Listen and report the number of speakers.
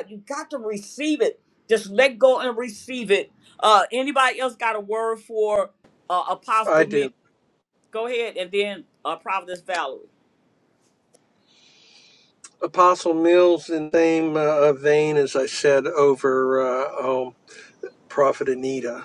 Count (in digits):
2